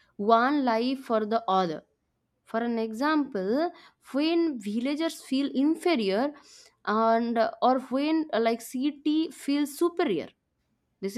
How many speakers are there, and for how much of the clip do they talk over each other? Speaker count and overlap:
1, no overlap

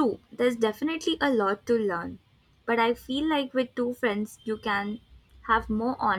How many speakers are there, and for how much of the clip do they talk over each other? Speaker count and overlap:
1, no overlap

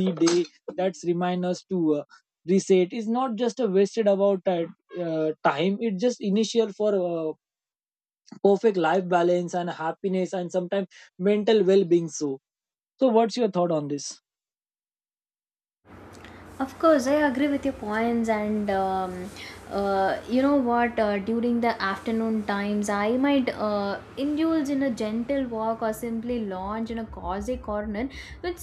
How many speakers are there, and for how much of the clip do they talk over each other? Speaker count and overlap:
2, no overlap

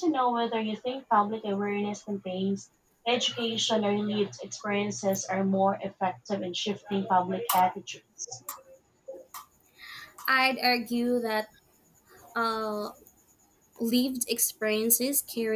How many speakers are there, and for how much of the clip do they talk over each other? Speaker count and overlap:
2, no overlap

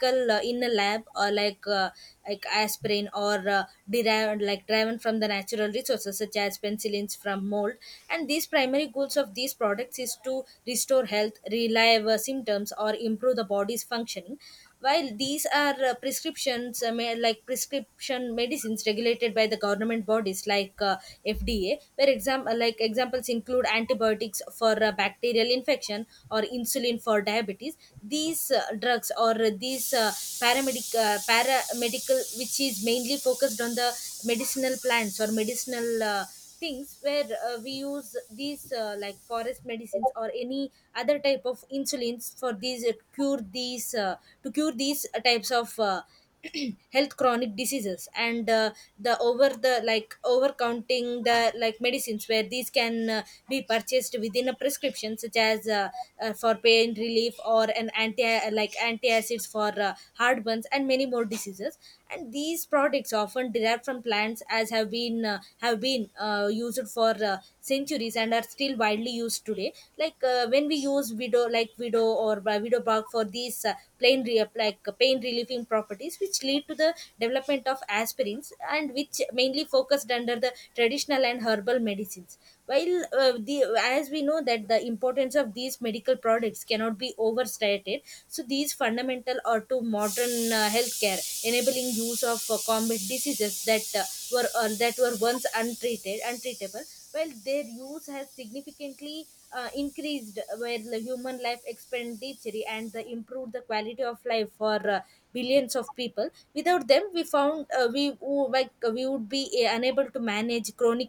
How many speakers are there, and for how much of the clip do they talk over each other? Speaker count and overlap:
1, no overlap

